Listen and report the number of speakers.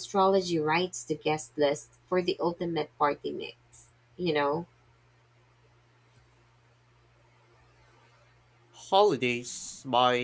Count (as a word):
two